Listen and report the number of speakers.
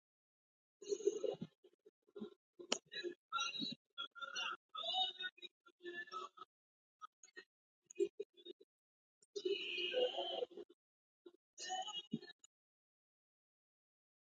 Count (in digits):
0